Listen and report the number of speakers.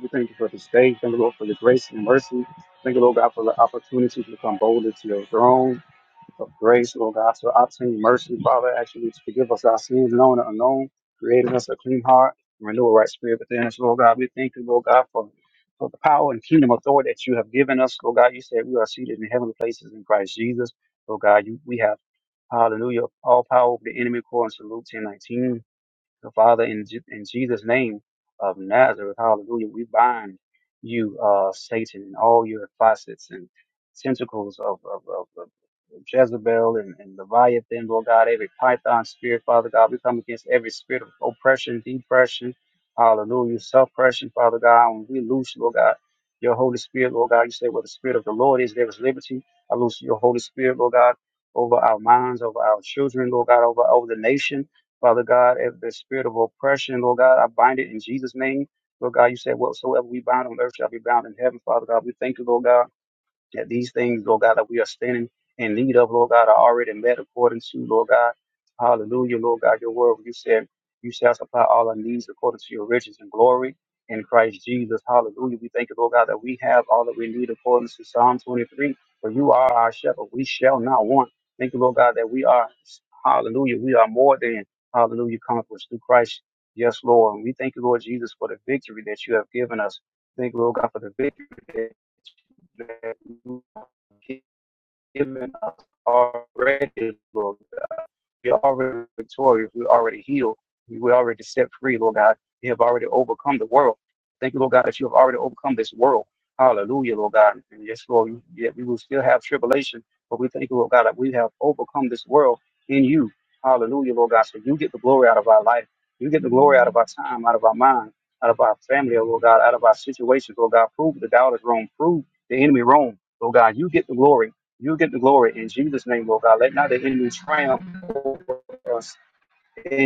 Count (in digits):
1